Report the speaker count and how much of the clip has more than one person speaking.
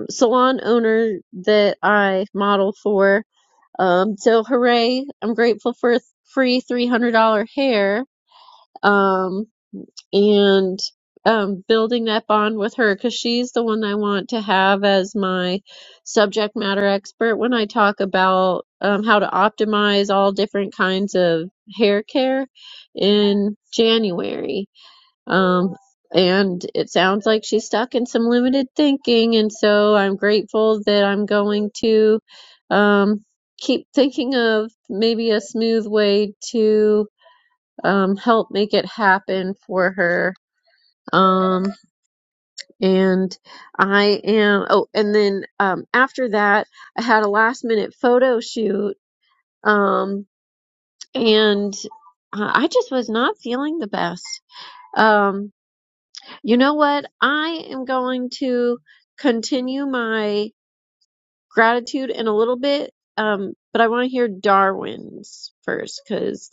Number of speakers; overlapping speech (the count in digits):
1, no overlap